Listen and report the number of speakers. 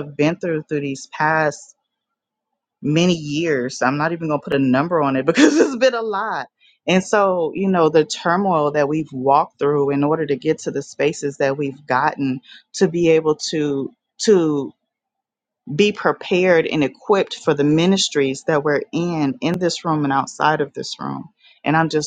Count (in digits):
1